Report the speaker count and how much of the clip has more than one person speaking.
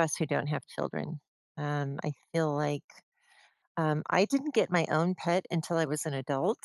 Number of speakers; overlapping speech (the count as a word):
one, no overlap